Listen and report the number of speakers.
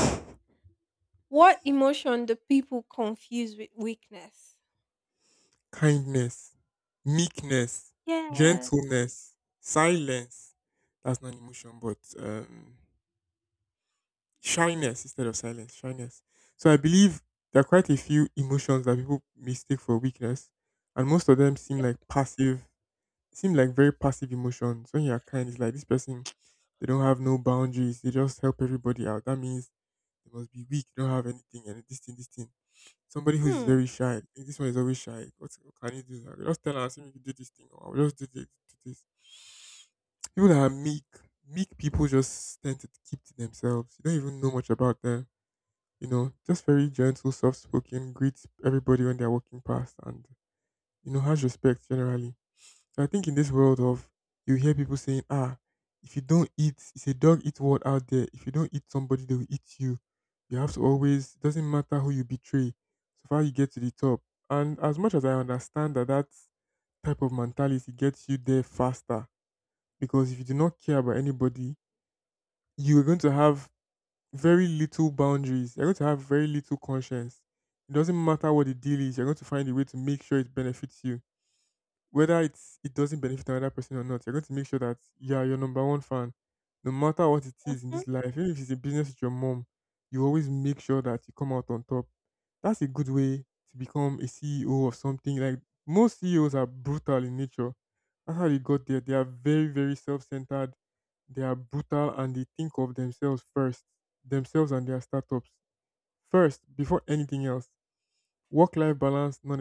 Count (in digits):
2